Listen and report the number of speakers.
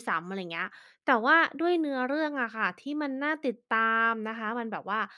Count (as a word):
one